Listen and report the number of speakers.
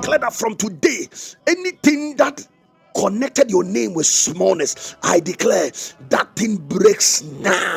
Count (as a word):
one